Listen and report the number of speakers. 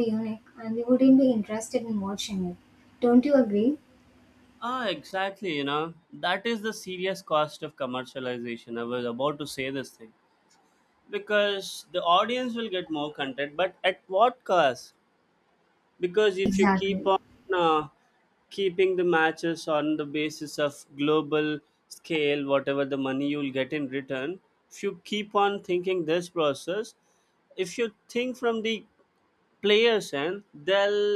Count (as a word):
two